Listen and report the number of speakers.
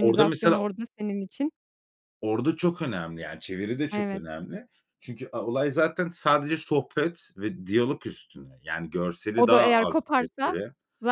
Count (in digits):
2